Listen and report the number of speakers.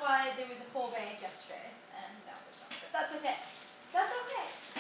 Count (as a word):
one